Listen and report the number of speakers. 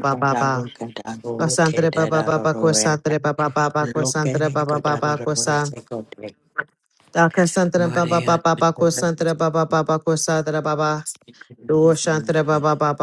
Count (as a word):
two